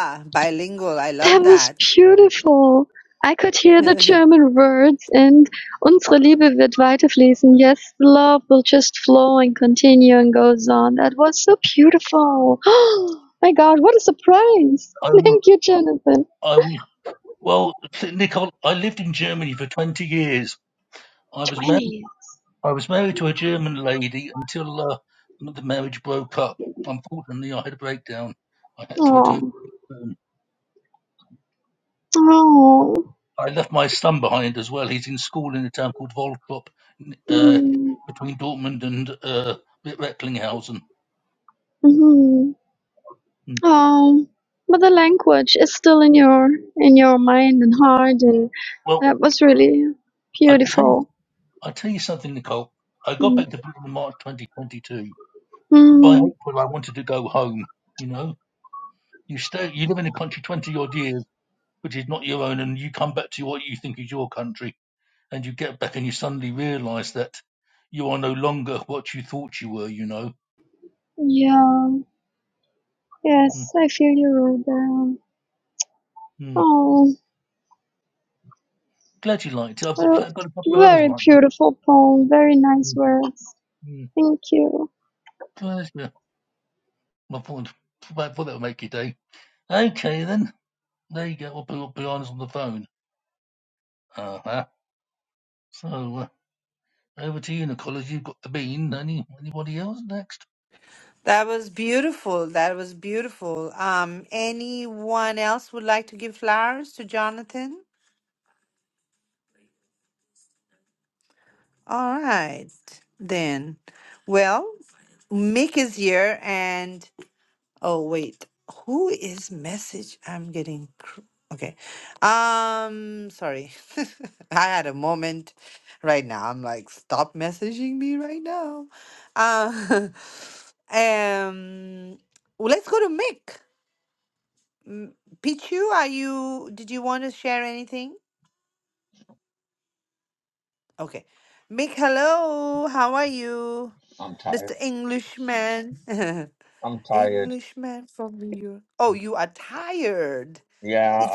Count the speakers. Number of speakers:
4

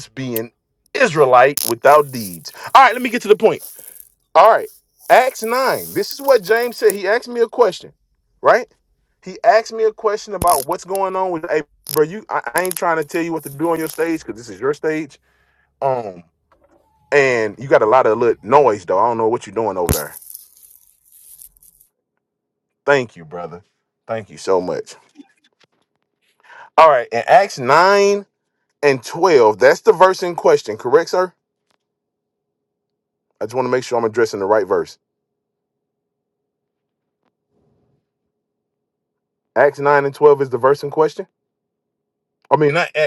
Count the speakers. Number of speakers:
1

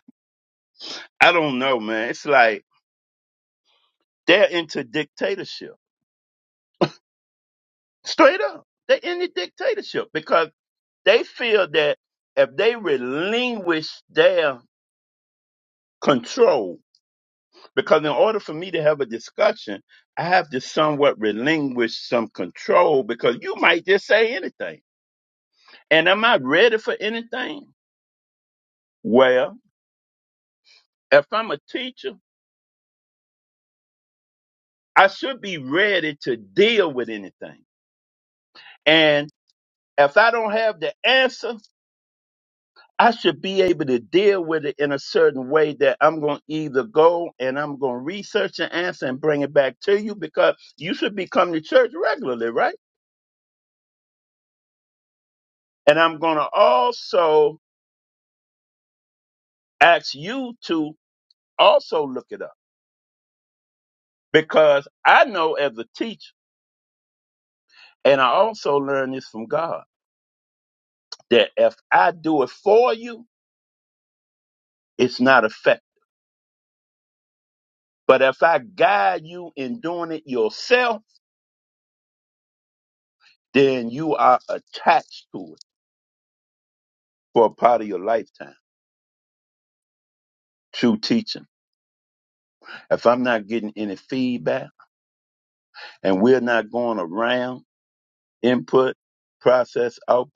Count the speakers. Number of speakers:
1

